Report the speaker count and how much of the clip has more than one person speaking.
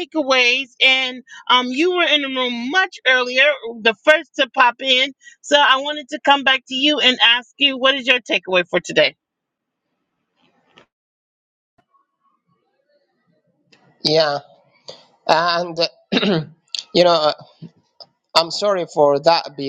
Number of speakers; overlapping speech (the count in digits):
2, no overlap